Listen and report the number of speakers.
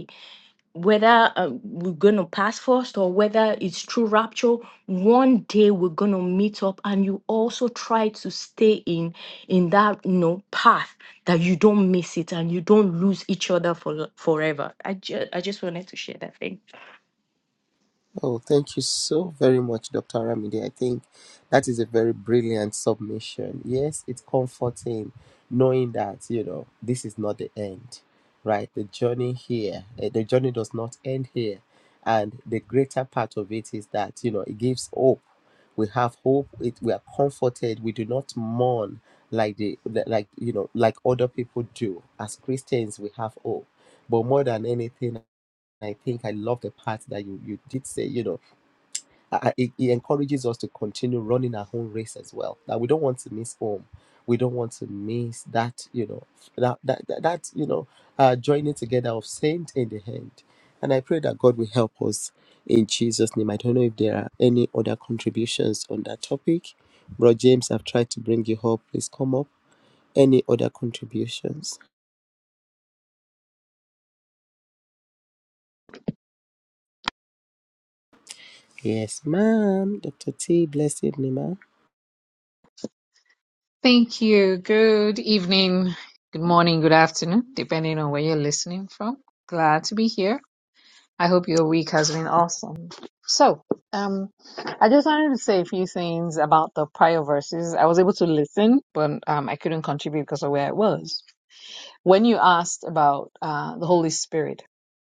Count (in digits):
3